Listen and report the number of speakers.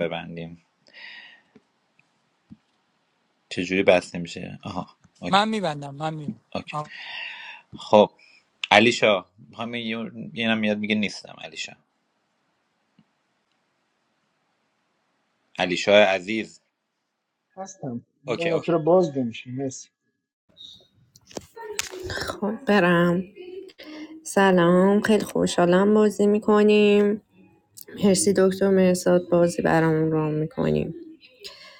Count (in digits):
4